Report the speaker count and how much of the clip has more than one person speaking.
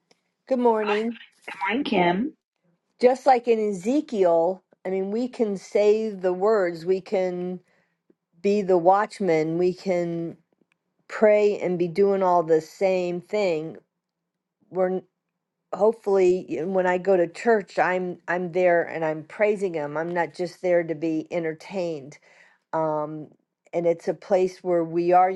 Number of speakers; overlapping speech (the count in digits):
2, about 1%